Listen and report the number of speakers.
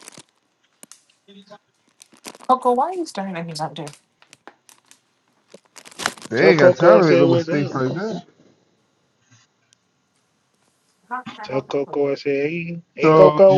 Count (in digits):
3